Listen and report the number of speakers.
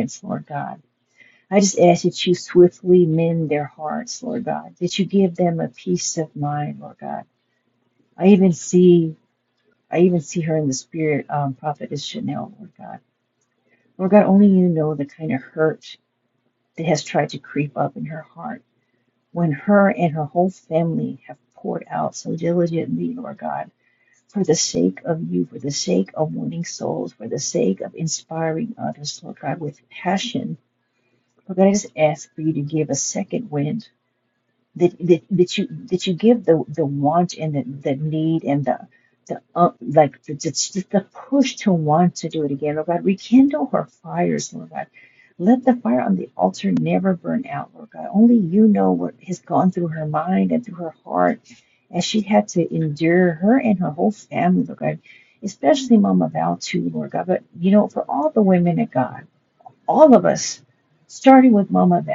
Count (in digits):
1